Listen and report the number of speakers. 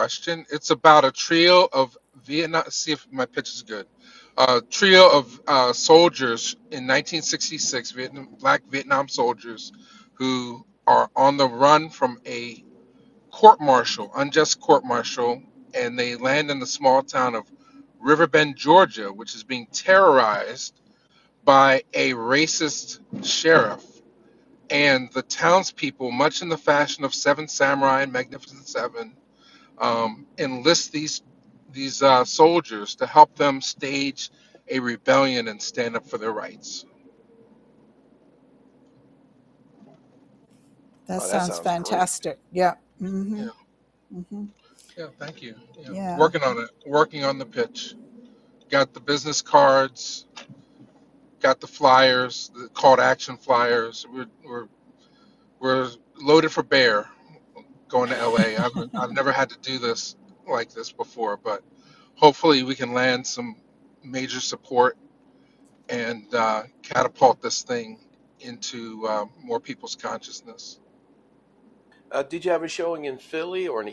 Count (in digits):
3